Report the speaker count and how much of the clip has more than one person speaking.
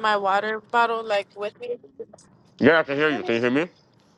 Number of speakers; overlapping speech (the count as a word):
two, about 12%